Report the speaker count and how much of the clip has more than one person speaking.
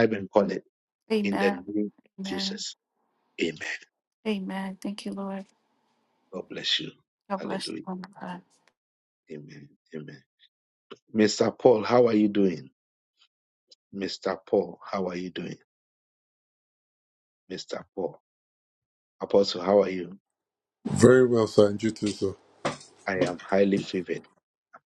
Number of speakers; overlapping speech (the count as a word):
three, about 5%